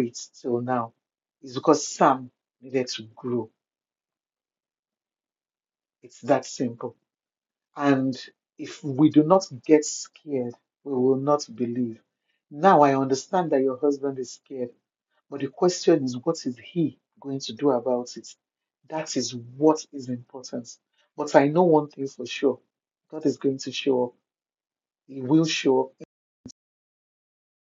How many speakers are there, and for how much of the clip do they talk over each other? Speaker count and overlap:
one, no overlap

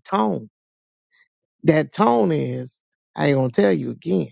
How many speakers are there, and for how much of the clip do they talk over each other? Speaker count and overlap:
one, no overlap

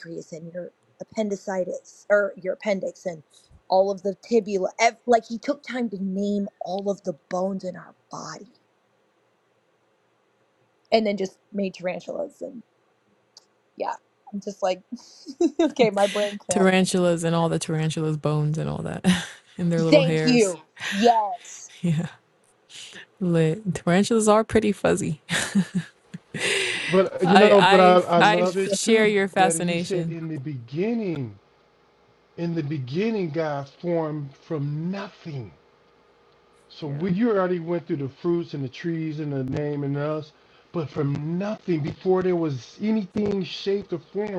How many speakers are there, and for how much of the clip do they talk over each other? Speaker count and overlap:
three, about 9%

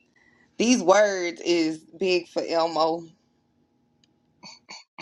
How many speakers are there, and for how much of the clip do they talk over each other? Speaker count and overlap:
one, no overlap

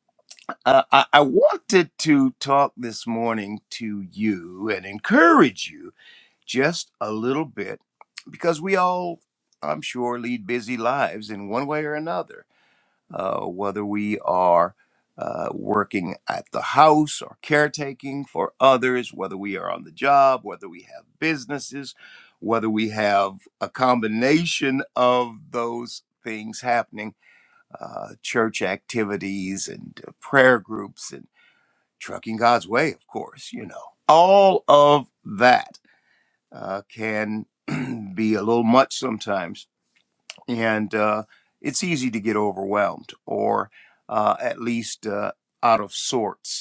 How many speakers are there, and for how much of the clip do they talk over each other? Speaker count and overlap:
one, no overlap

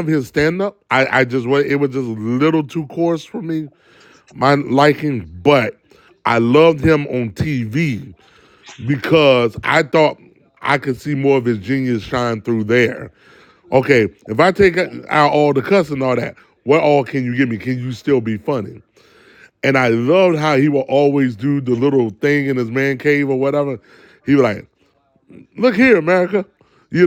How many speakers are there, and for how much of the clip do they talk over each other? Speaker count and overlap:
one, no overlap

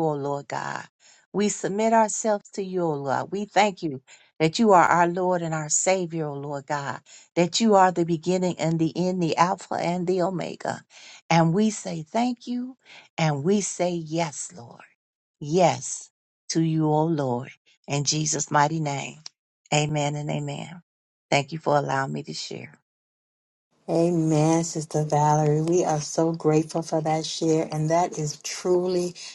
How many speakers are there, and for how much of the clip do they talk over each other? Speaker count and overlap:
two, no overlap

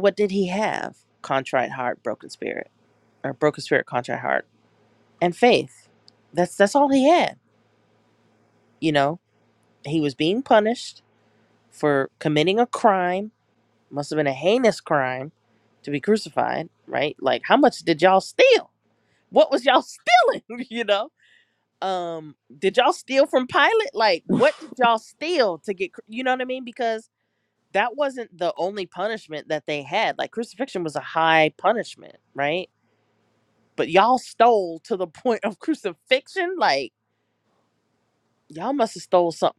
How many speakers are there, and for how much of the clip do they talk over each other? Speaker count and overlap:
one, no overlap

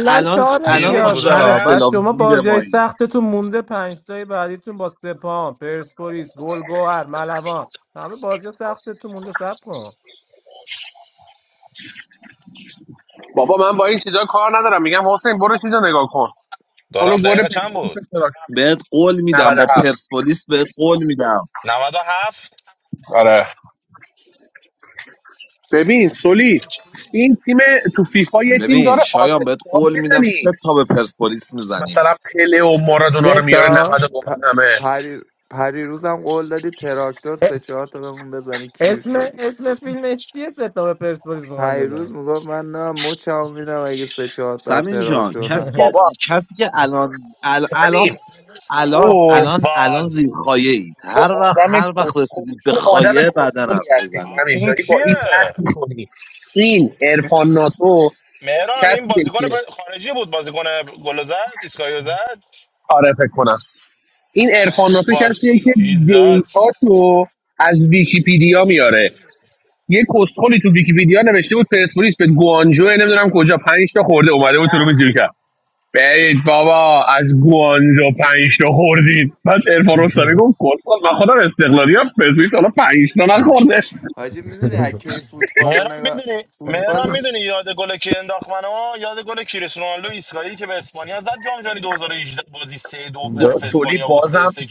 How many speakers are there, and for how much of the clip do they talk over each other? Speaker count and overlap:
five, about 21%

